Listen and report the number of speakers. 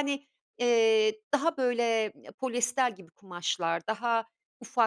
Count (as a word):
one